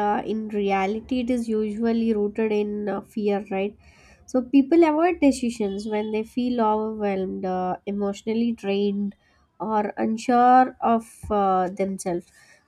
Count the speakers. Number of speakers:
one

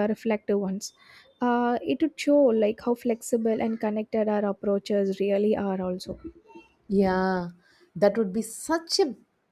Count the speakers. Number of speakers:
two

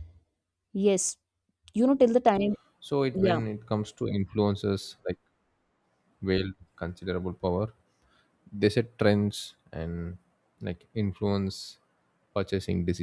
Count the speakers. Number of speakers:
two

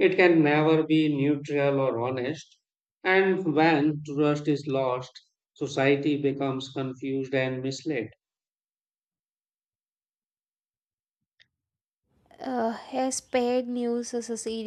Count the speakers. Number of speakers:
two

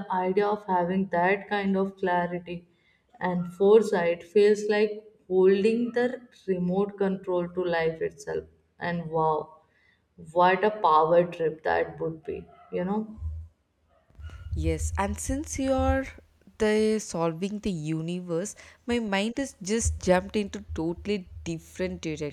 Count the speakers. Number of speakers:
two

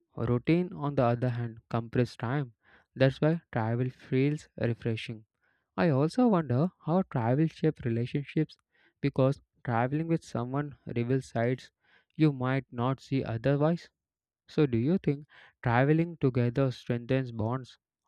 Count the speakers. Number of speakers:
one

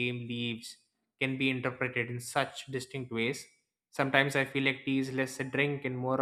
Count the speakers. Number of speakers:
one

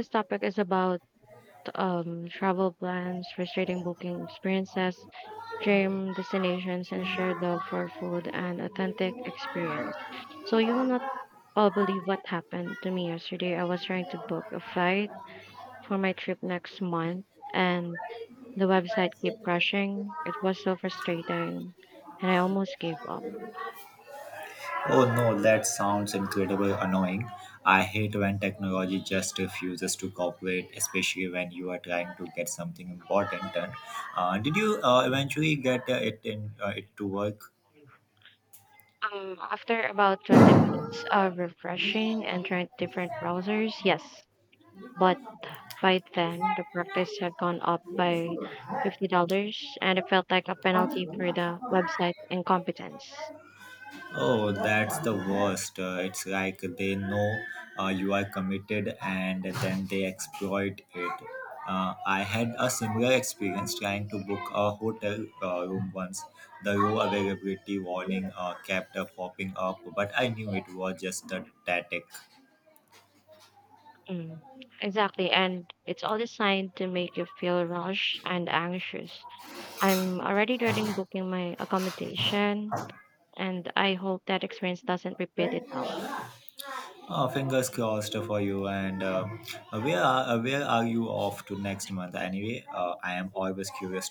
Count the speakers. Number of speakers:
two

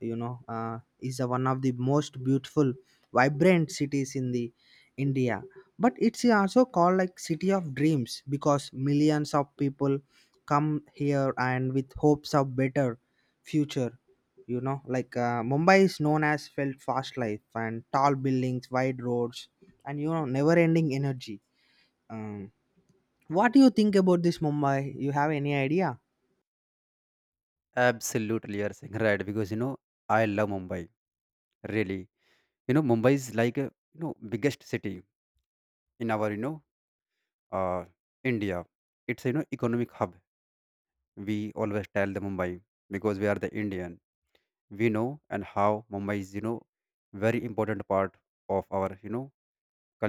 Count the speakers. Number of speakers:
two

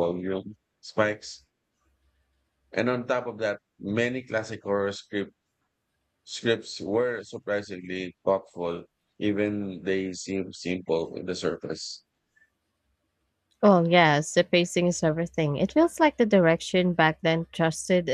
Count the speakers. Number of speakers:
two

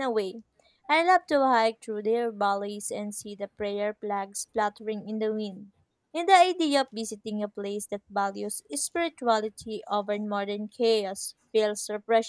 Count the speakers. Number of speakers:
one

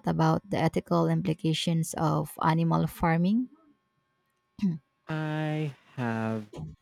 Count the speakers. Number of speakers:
two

